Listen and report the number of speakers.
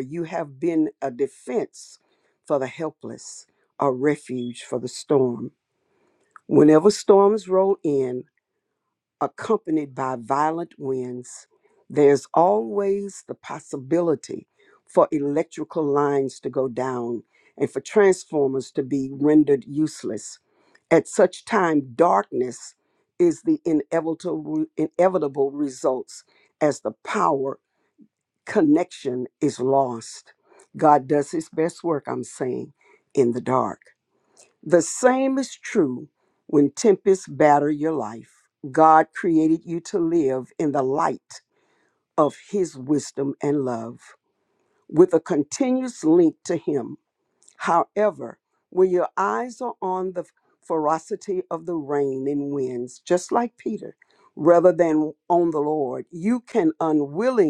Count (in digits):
1